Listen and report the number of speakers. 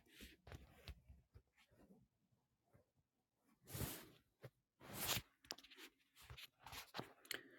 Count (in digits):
0